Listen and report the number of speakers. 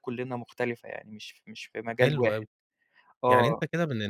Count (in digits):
2